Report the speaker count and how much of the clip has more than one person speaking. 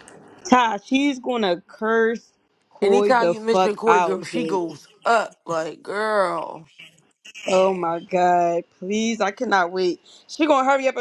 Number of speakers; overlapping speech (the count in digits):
2, about 16%